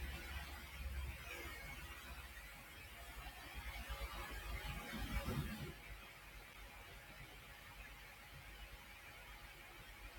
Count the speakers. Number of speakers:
0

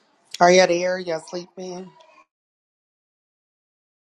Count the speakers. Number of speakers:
1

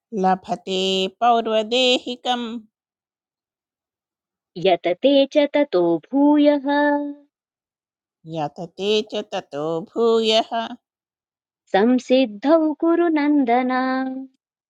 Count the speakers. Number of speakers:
2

